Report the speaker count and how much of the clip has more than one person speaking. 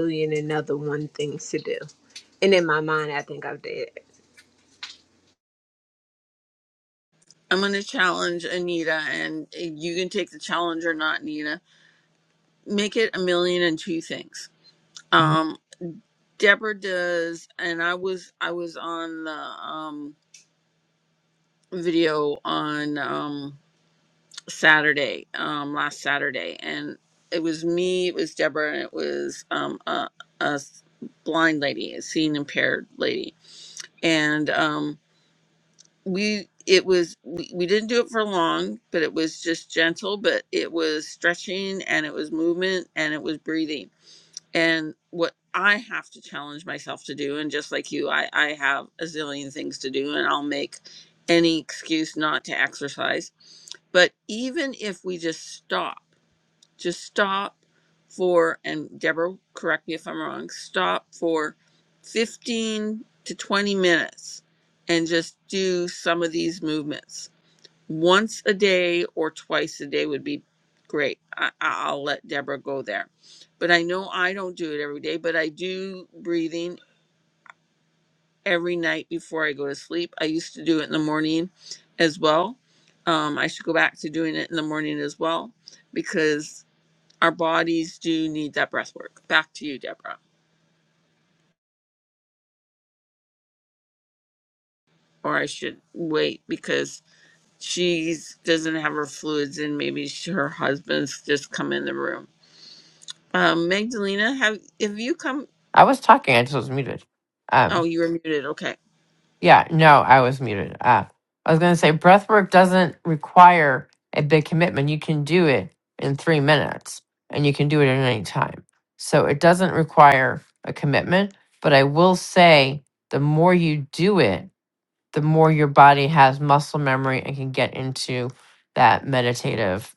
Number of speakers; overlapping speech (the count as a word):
three, under 1%